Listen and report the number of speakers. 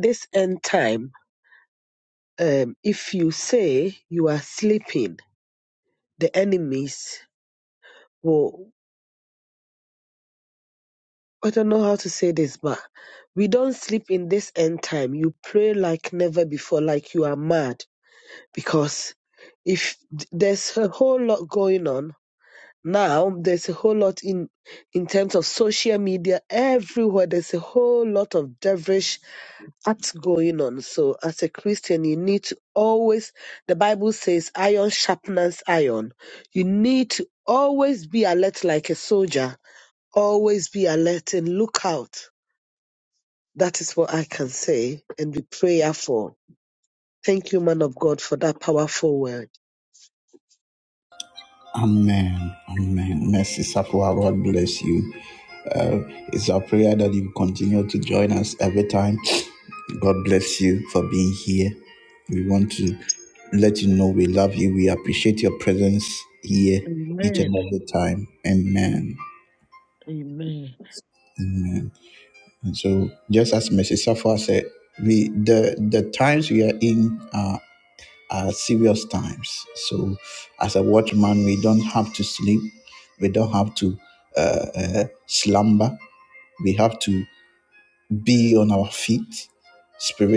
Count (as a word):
two